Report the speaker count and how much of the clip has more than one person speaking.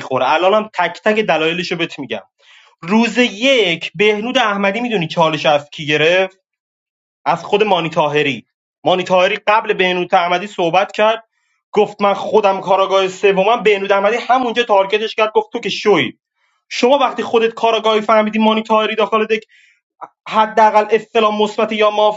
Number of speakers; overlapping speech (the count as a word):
one, no overlap